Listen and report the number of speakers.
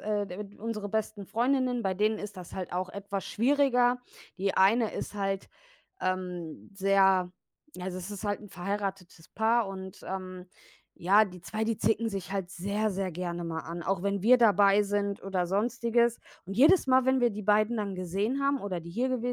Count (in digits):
1